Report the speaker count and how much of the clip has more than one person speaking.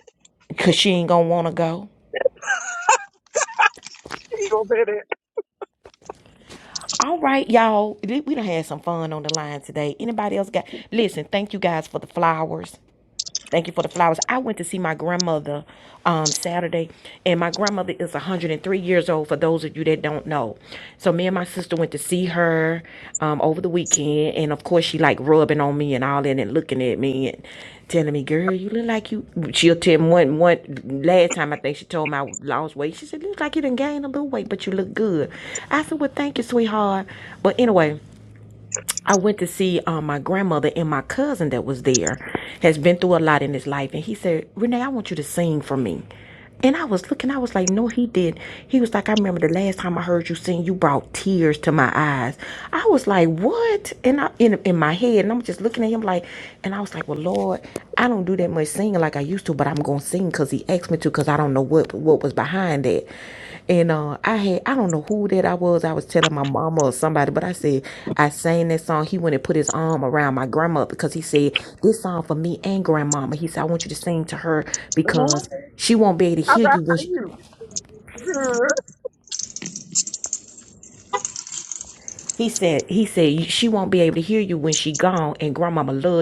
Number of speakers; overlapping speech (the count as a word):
two, about 1%